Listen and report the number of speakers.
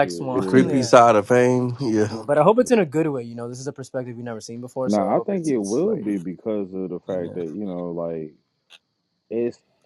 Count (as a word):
three